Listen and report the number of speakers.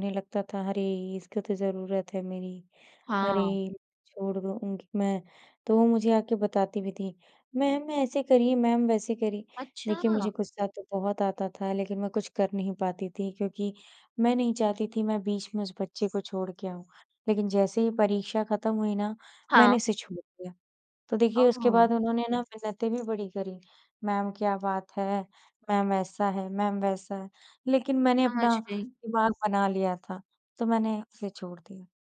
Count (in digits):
2